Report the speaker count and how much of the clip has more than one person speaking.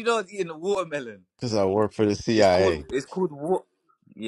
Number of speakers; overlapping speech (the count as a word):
two, about 13%